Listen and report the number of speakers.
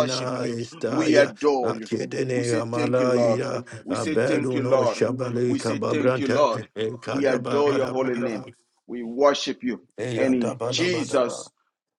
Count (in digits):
2